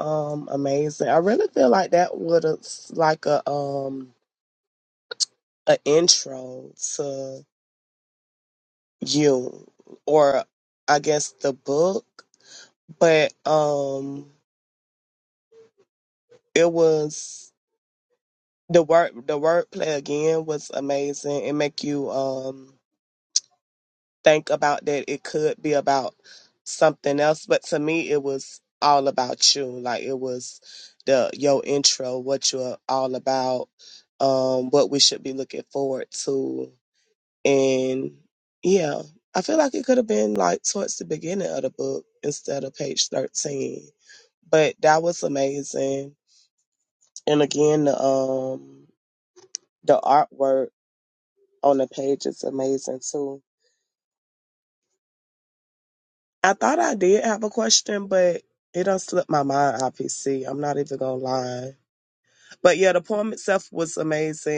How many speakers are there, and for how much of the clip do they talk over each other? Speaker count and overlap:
one, no overlap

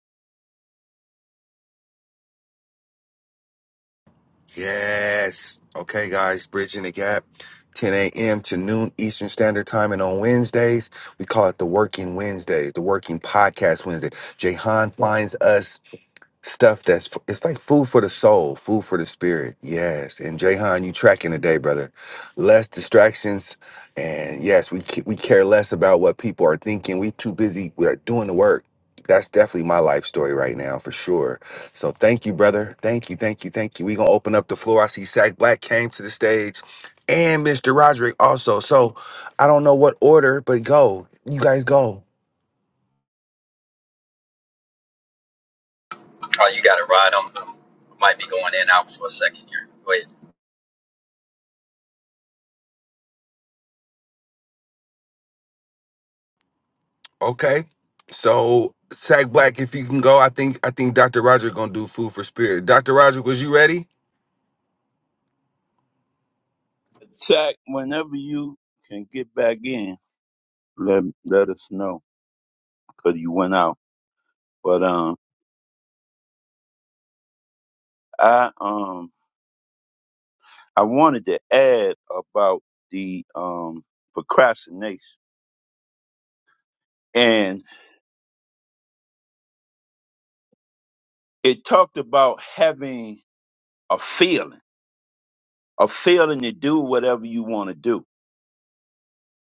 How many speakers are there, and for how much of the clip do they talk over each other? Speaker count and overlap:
three, no overlap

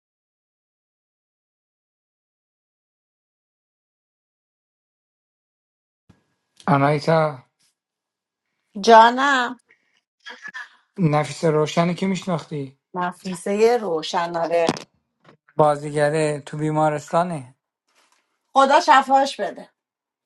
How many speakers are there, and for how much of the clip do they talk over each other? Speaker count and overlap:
two, no overlap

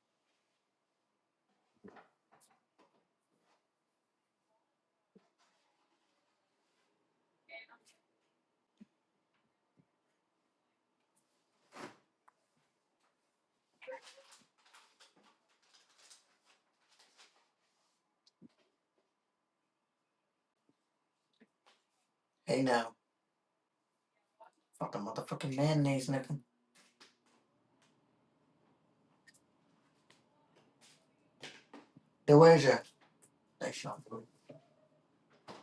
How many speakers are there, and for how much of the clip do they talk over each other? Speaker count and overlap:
one, no overlap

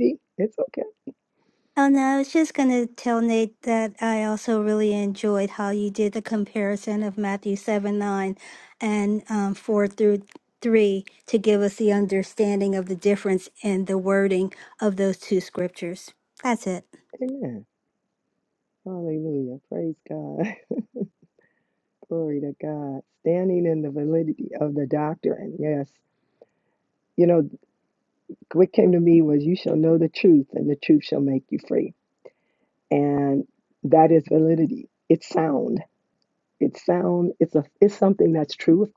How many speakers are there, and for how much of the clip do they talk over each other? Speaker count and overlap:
two, no overlap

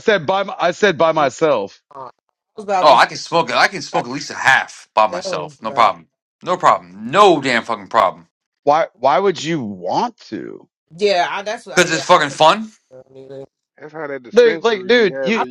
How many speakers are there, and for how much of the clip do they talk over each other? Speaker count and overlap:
four, about 18%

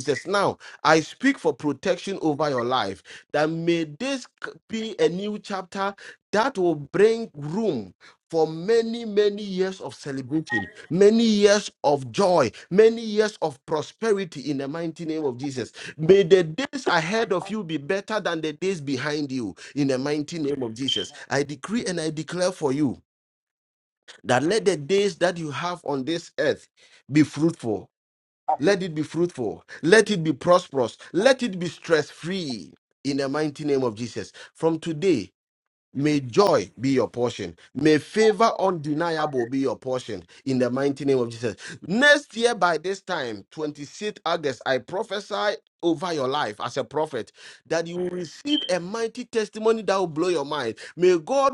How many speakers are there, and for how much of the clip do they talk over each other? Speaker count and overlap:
one, no overlap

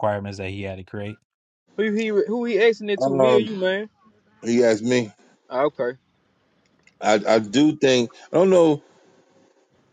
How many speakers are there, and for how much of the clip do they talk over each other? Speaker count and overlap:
three, about 5%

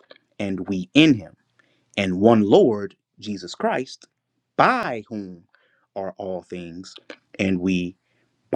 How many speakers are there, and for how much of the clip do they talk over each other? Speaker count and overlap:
one, no overlap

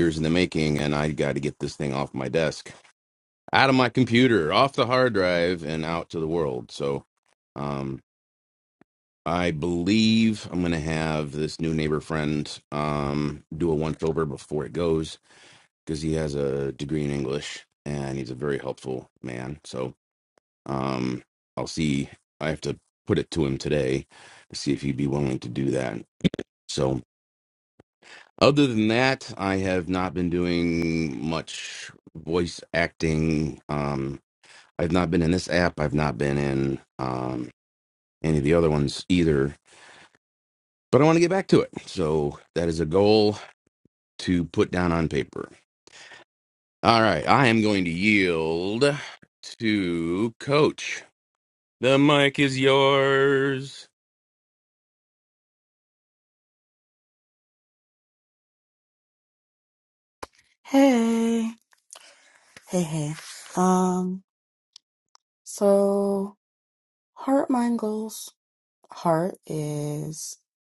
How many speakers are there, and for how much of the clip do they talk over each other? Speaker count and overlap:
two, no overlap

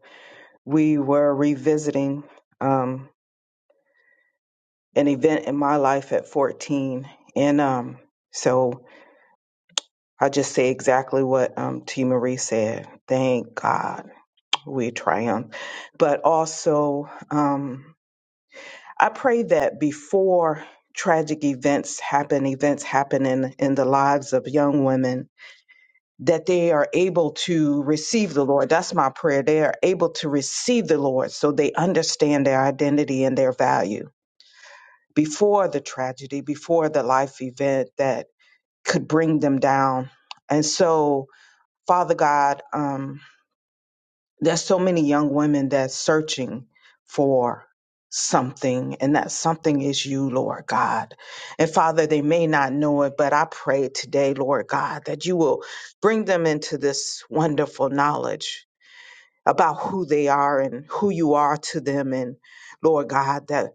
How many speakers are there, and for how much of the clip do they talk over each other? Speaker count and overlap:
one, no overlap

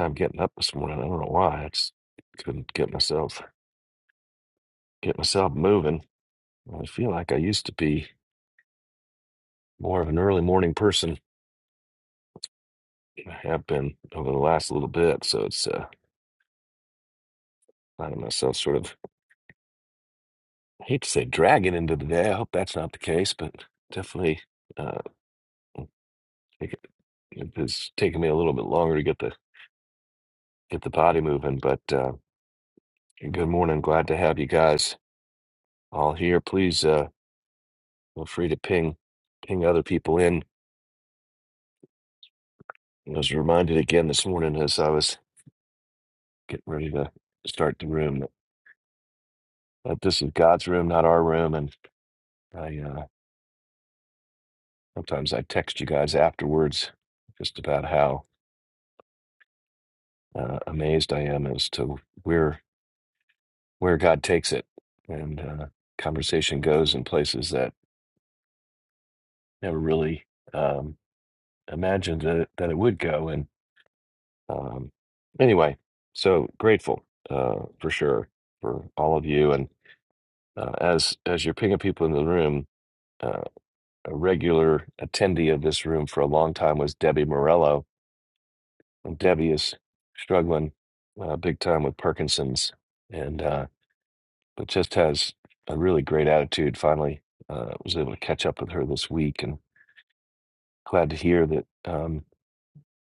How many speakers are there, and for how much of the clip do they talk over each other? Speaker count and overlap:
one, no overlap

